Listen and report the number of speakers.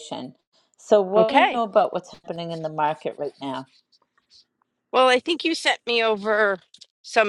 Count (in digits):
2